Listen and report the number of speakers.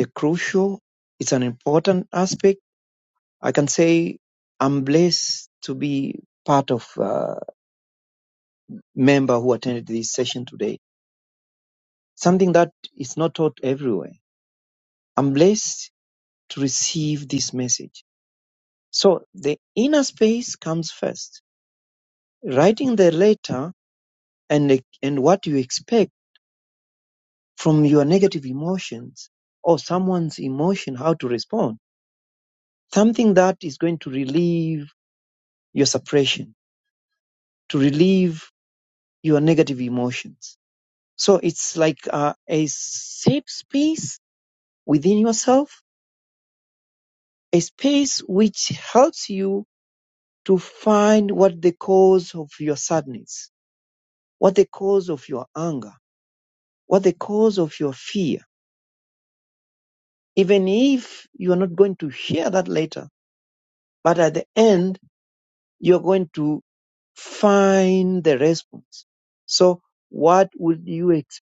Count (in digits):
1